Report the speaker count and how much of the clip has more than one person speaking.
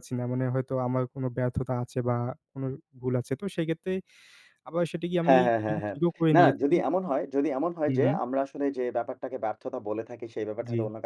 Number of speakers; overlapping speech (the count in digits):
2, about 16%